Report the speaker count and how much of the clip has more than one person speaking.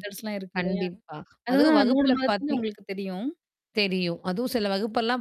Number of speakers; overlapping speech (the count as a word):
two, about 29%